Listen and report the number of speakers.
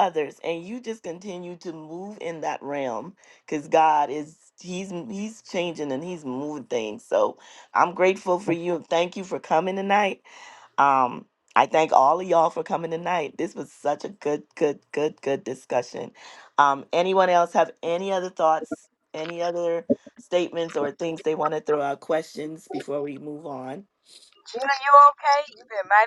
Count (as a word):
two